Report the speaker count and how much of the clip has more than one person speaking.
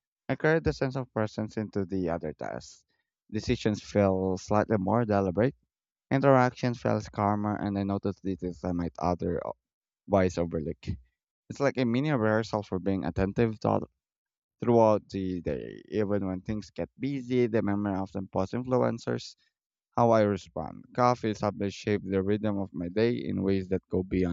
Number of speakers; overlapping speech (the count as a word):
one, no overlap